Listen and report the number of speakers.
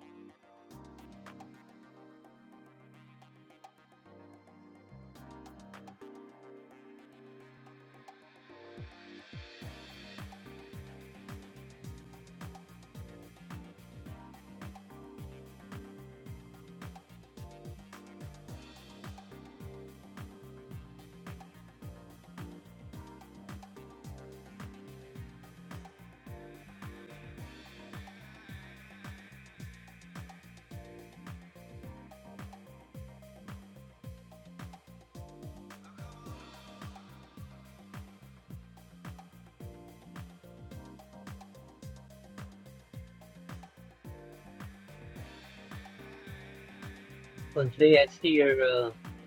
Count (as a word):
one